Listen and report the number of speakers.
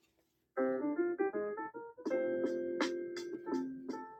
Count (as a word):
zero